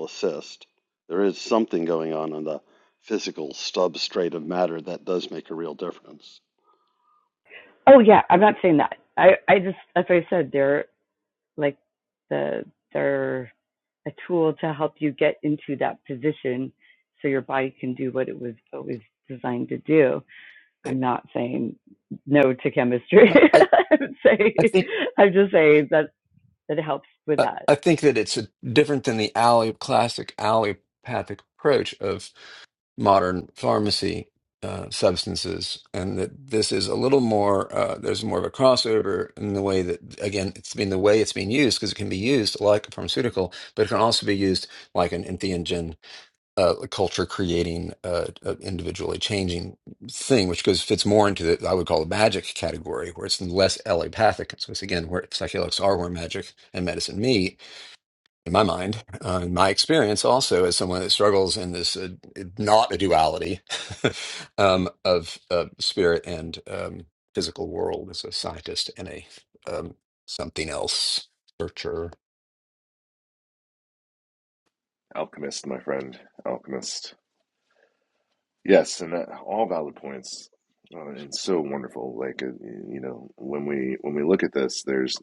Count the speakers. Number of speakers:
4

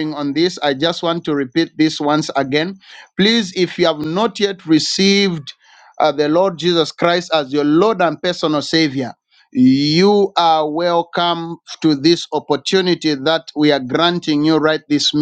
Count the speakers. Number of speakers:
1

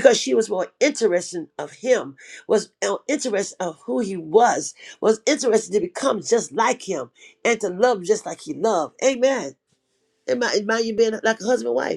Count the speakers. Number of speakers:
1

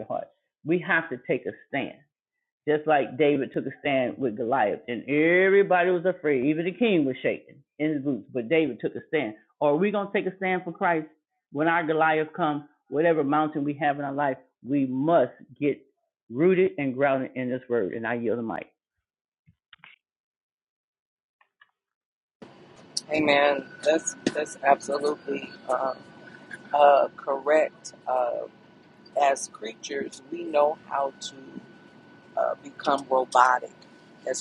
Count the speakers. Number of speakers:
2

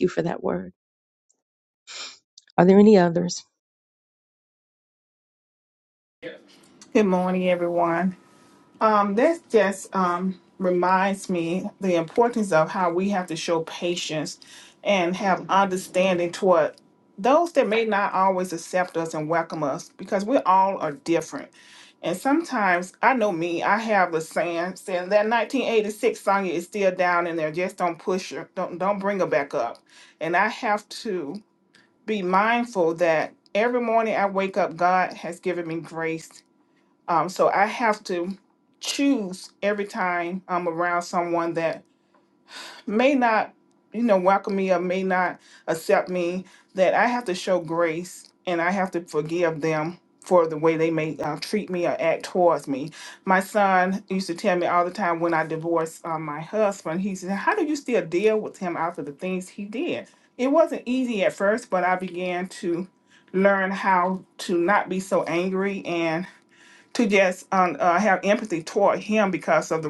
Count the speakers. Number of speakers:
2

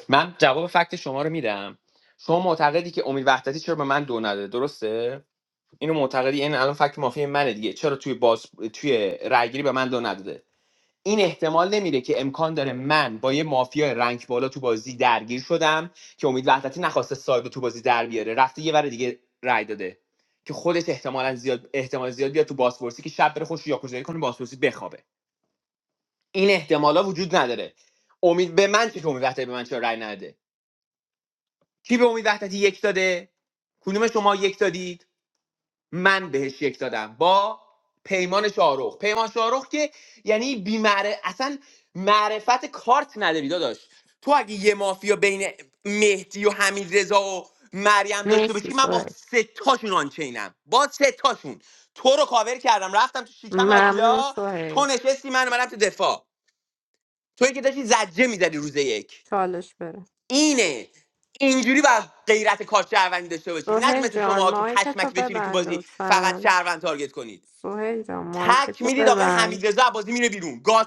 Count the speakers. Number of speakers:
2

